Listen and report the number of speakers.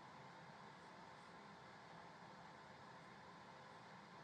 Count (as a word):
zero